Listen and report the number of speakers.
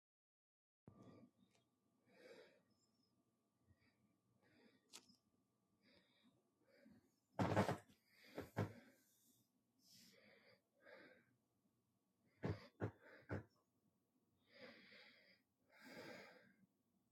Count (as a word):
zero